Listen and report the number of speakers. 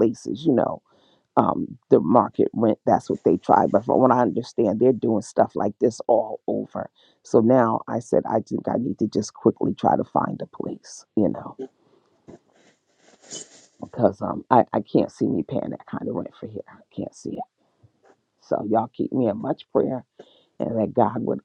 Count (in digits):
1